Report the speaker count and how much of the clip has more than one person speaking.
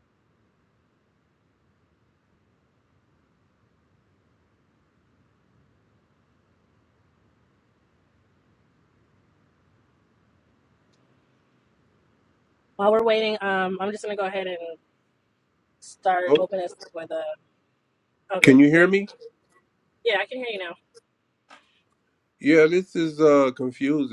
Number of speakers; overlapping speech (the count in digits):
2, about 3%